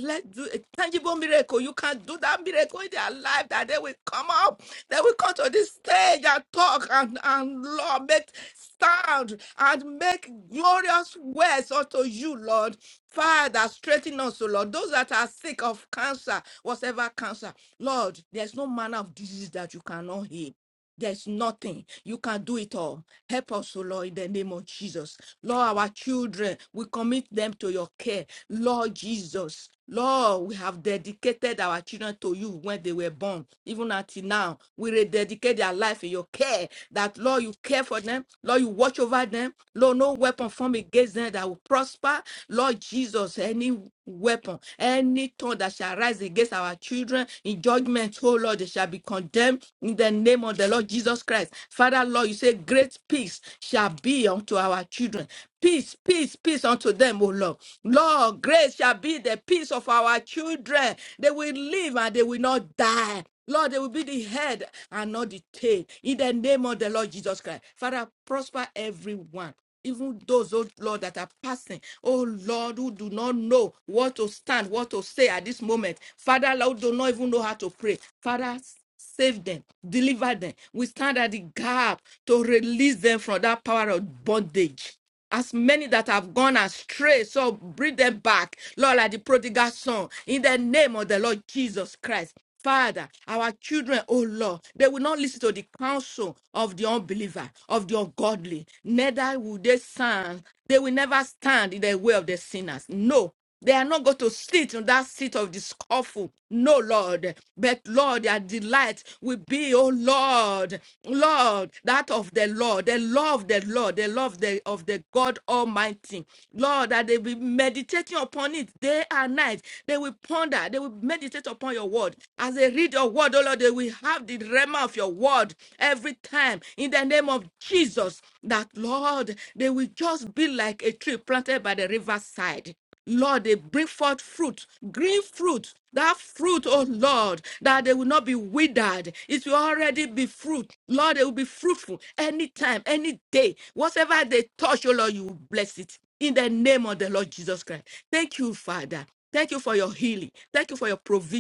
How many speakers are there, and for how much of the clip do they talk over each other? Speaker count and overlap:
1, no overlap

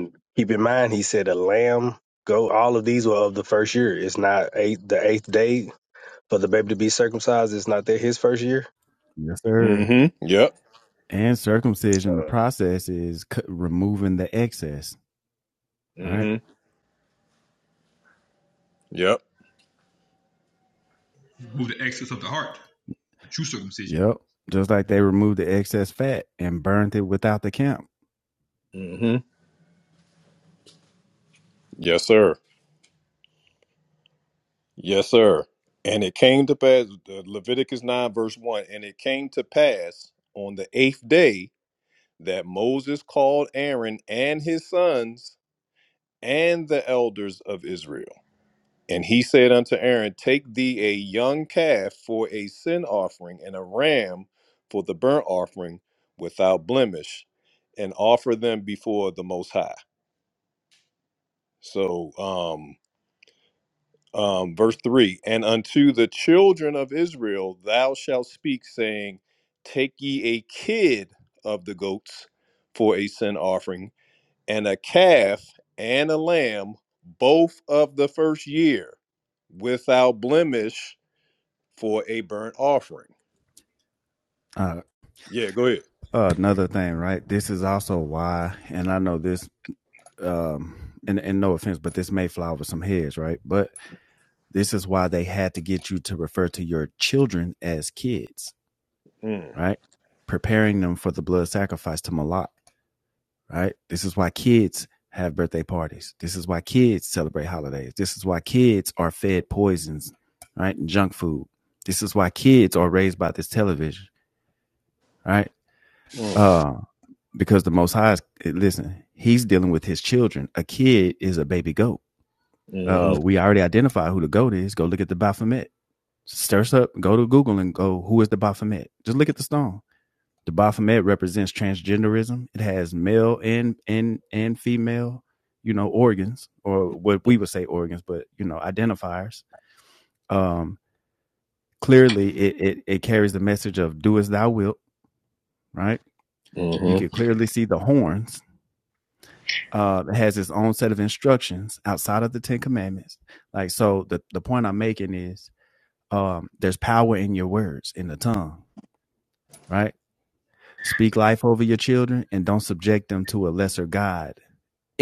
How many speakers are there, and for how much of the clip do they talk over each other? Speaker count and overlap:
4, about 1%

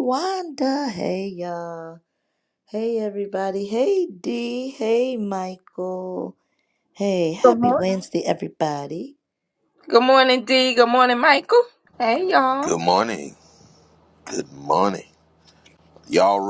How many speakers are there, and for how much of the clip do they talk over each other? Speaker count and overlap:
3, about 3%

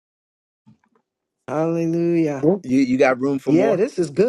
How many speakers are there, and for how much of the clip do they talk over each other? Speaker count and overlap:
2, about 7%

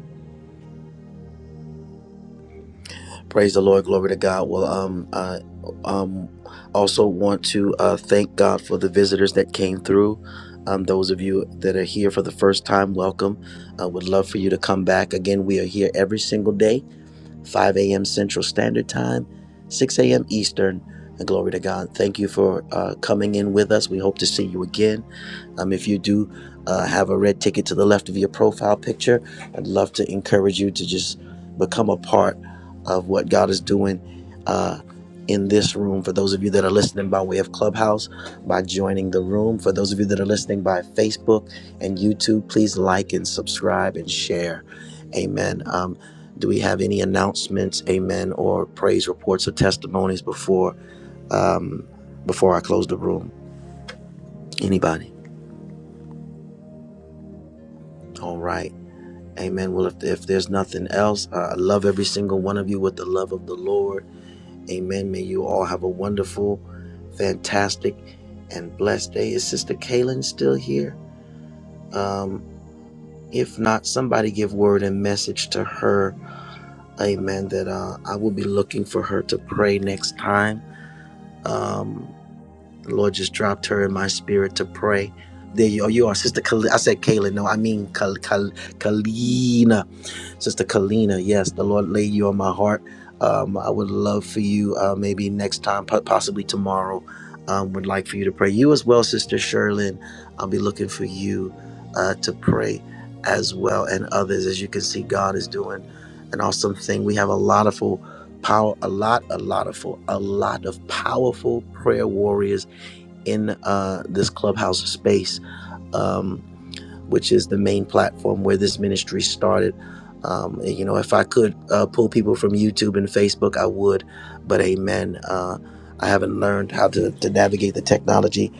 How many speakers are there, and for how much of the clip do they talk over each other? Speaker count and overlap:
1, no overlap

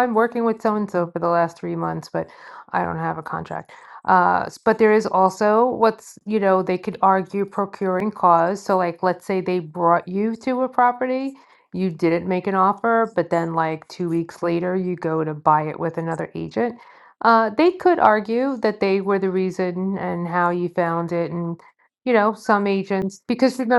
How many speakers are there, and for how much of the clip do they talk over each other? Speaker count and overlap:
1, no overlap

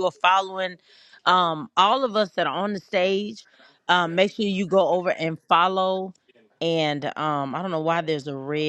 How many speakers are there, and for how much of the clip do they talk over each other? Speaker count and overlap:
1, no overlap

